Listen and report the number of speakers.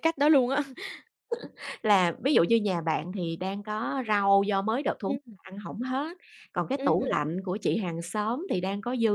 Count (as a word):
two